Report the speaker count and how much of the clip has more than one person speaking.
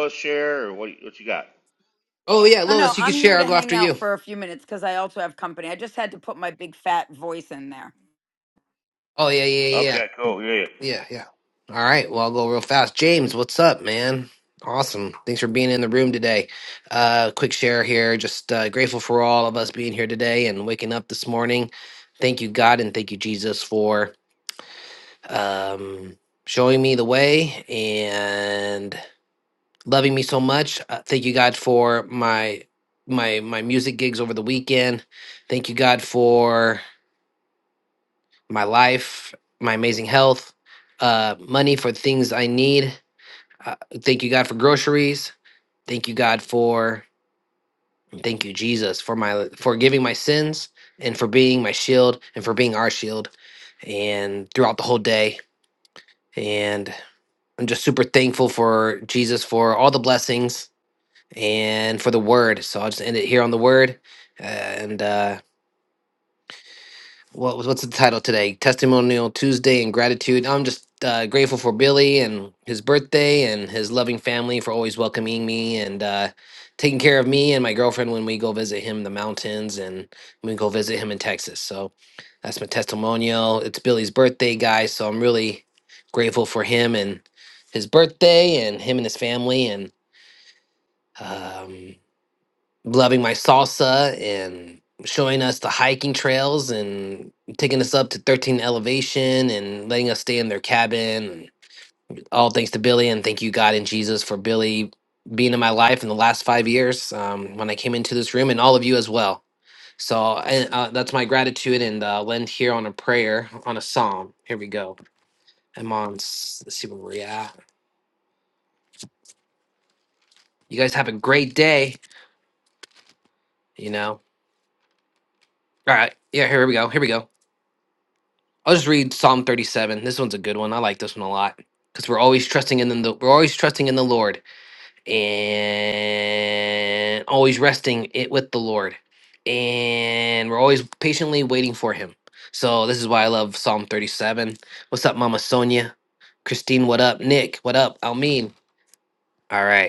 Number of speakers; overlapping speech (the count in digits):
3, about 1%